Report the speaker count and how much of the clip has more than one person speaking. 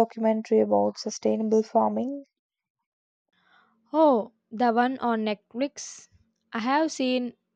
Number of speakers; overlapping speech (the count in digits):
2, no overlap